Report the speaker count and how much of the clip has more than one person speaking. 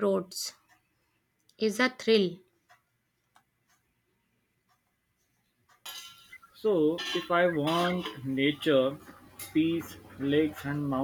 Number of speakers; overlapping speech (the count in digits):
2, no overlap